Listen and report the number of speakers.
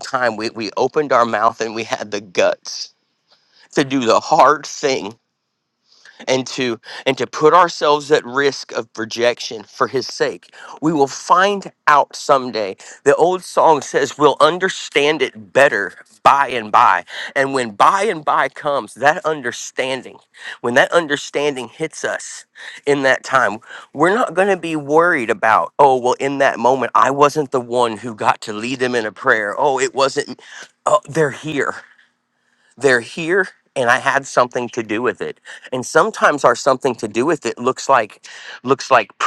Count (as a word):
one